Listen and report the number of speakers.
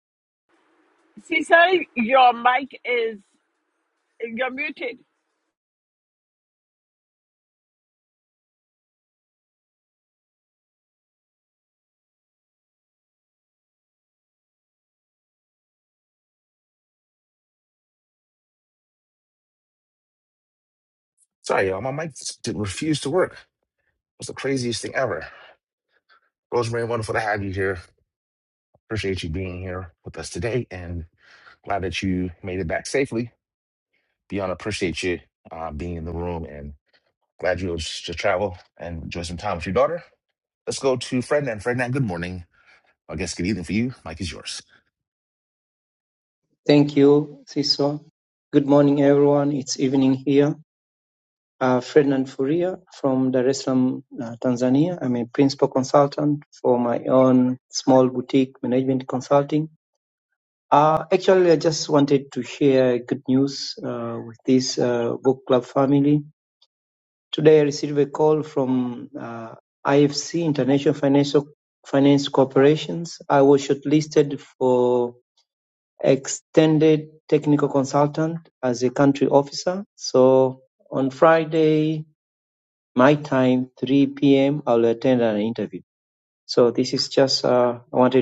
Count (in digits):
3